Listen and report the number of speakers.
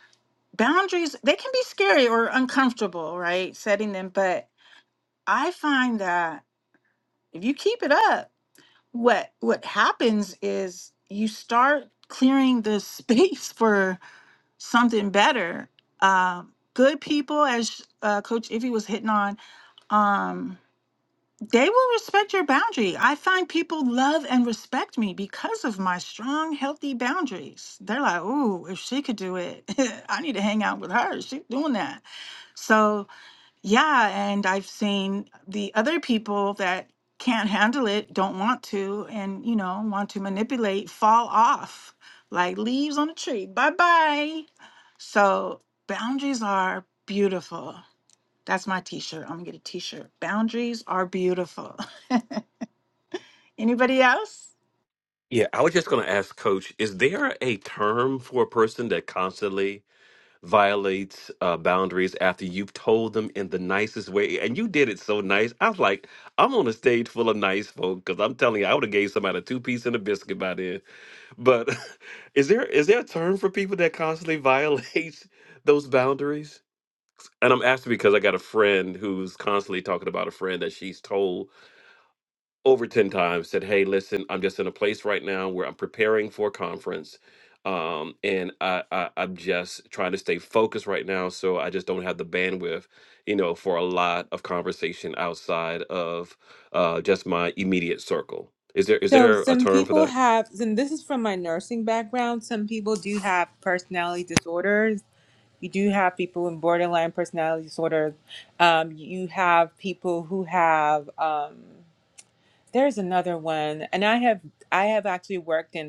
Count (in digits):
3